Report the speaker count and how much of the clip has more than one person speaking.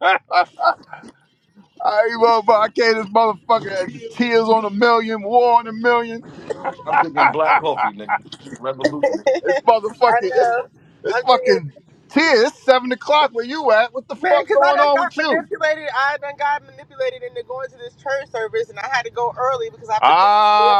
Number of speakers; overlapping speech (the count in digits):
3, about 14%